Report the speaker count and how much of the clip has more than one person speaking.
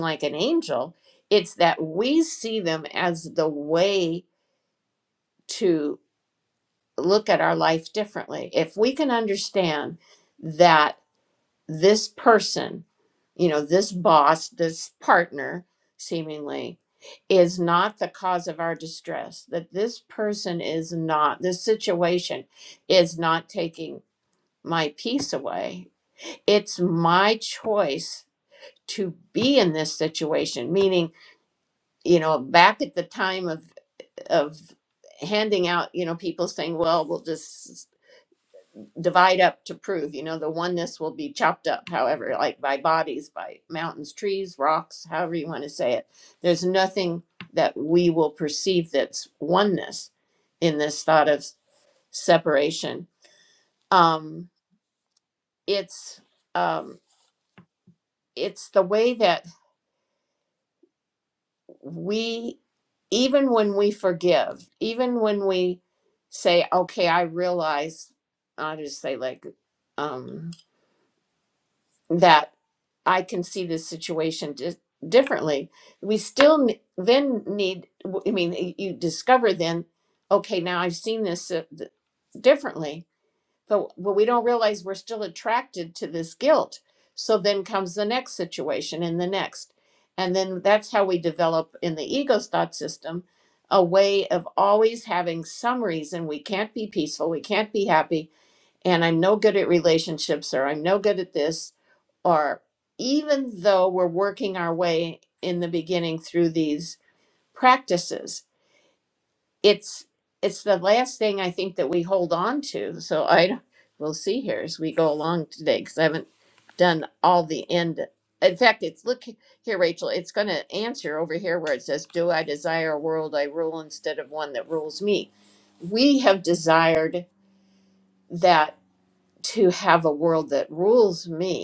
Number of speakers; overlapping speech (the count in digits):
1, no overlap